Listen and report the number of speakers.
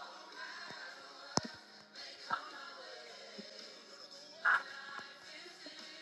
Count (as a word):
zero